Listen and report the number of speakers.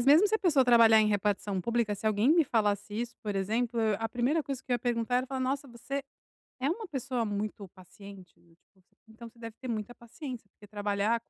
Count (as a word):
one